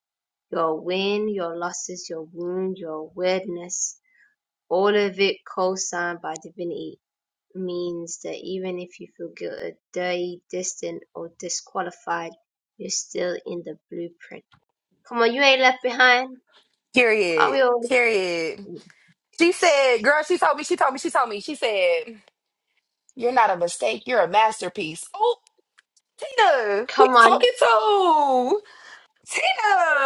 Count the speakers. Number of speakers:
2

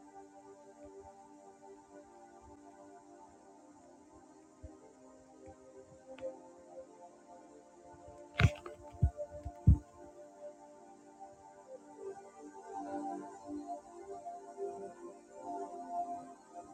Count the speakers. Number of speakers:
0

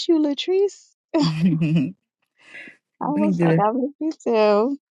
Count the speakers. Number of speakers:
2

